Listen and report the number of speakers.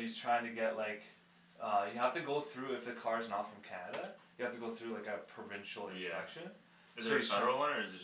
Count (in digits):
2